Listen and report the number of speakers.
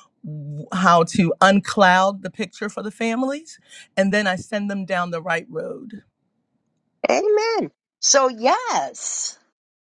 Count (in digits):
2